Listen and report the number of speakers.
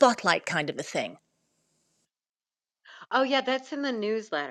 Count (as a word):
two